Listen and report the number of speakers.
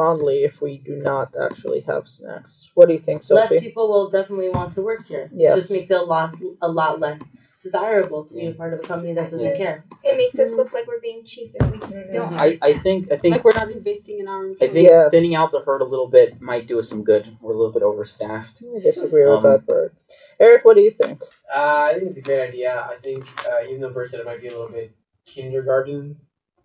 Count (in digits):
6